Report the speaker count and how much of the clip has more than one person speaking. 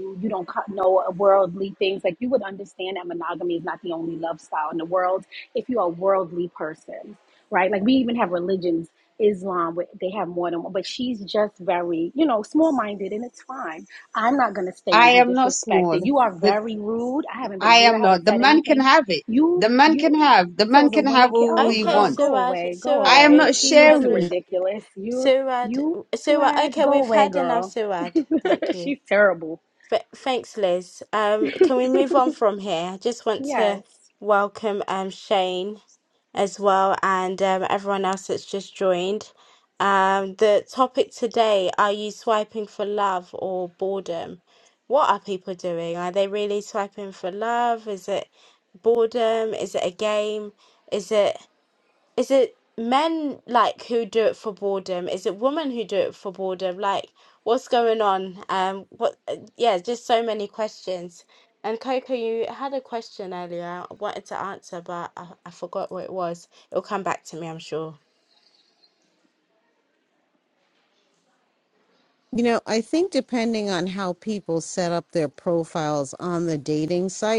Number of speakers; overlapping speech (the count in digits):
4, about 12%